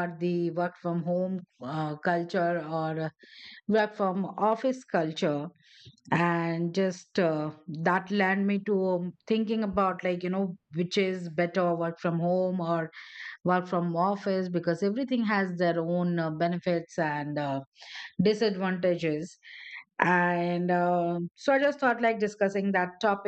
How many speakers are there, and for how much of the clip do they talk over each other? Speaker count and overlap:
1, no overlap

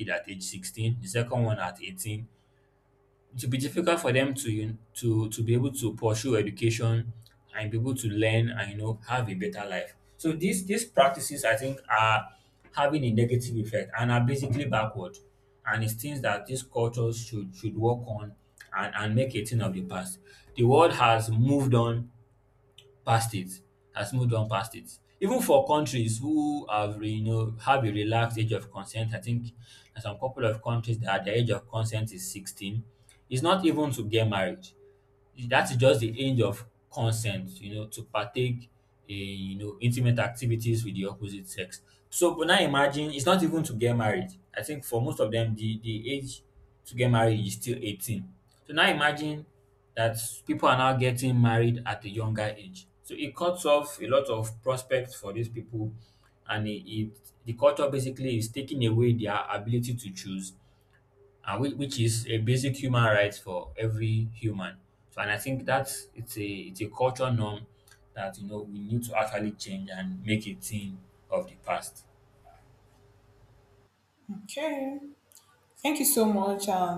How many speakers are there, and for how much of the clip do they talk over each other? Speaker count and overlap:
2, no overlap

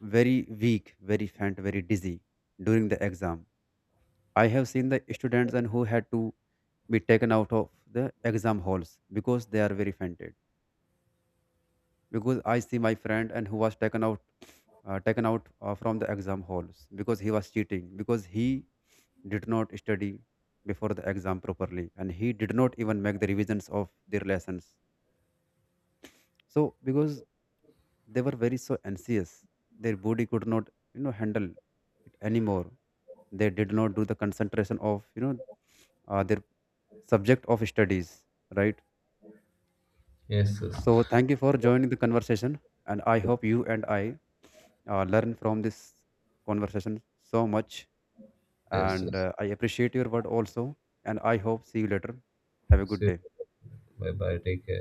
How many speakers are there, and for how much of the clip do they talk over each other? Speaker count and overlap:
2, about 1%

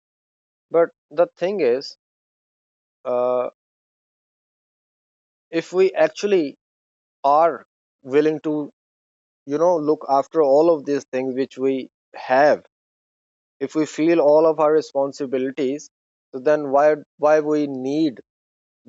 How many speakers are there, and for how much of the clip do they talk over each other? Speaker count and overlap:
1, no overlap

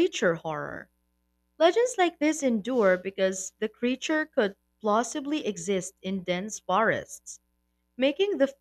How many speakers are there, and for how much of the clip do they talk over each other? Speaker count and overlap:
1, no overlap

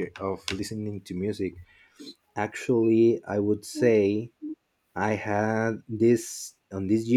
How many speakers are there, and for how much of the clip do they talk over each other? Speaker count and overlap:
1, no overlap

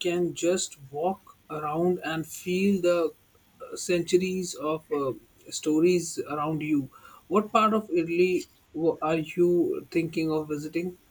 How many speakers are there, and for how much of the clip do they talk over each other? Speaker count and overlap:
1, no overlap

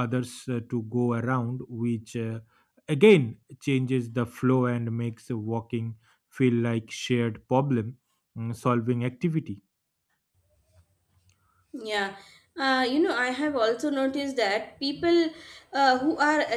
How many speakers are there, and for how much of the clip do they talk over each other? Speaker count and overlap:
2, no overlap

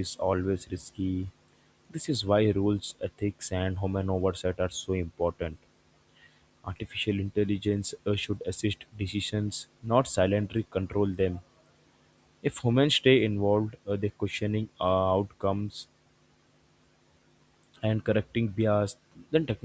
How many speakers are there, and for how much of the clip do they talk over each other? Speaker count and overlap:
1, no overlap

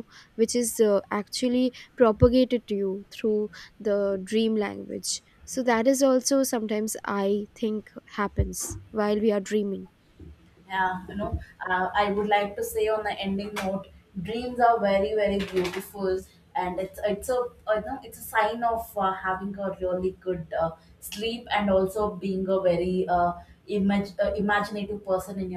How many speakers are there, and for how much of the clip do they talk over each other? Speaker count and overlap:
2, no overlap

